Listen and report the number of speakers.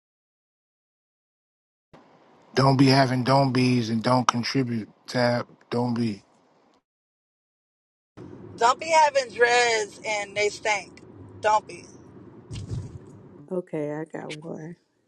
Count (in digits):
3